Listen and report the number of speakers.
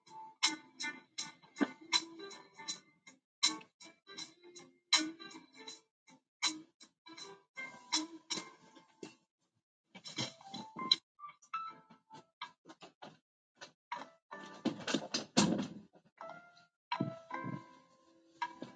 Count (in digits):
0